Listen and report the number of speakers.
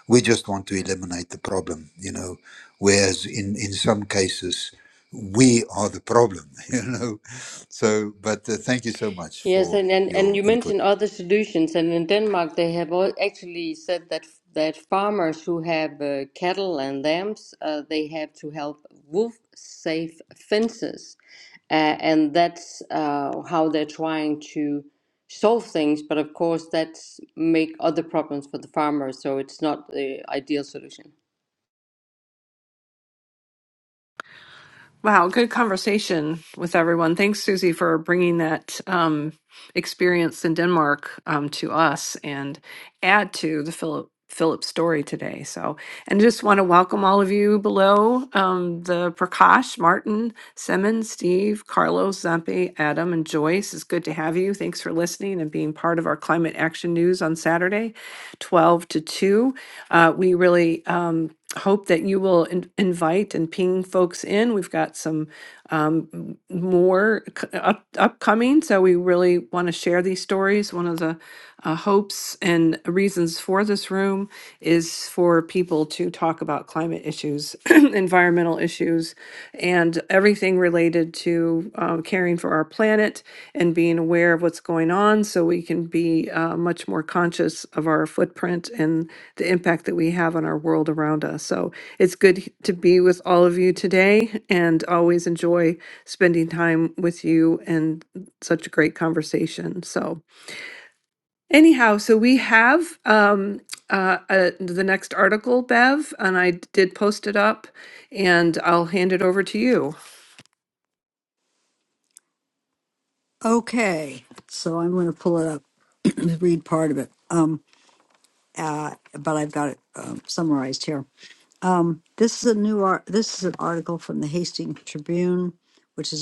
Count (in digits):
4